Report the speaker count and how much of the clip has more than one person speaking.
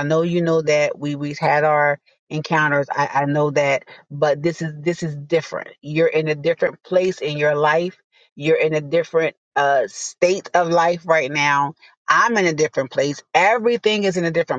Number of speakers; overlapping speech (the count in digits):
1, no overlap